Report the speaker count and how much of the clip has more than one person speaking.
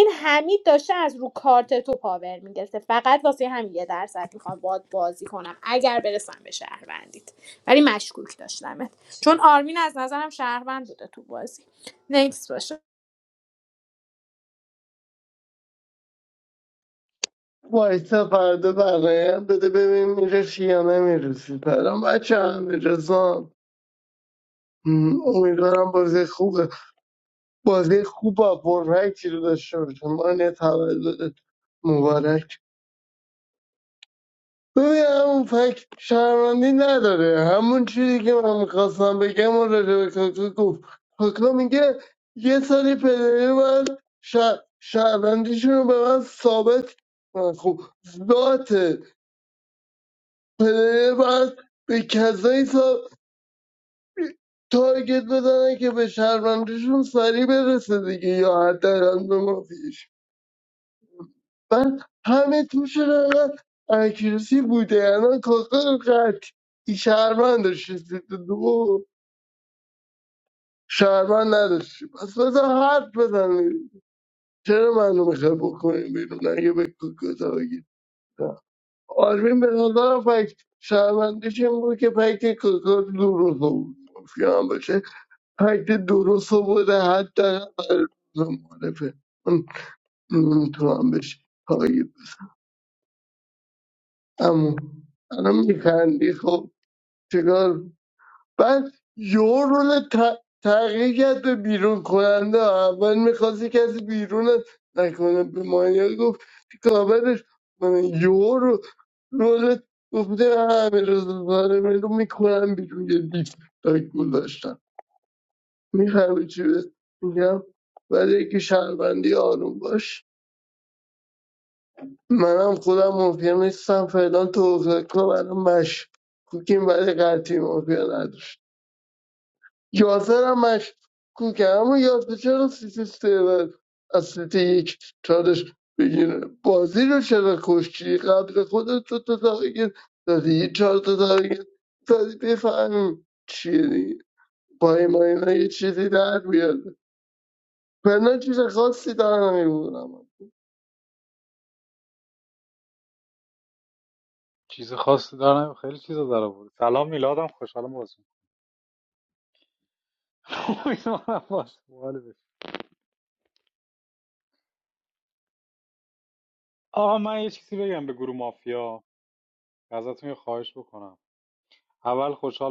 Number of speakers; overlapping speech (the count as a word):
three, no overlap